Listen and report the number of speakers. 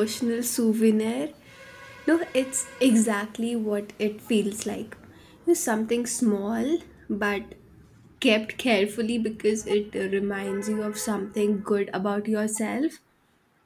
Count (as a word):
one